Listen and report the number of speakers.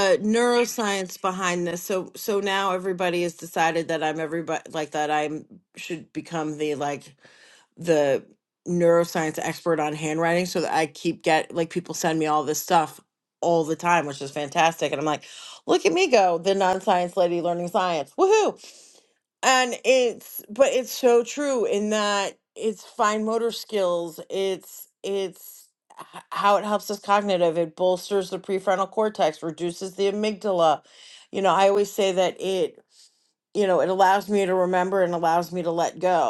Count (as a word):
one